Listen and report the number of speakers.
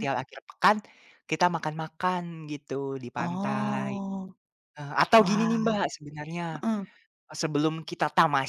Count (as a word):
two